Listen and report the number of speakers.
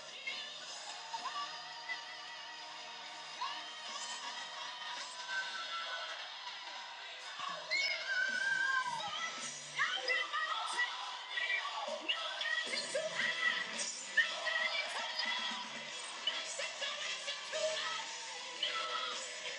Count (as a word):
zero